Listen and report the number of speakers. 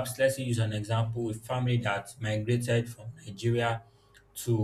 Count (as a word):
one